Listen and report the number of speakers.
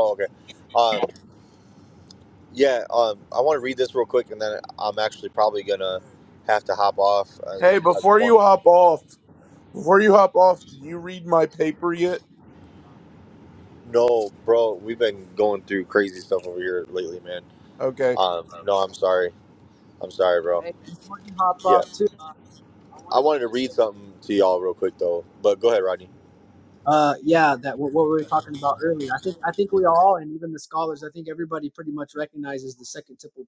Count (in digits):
3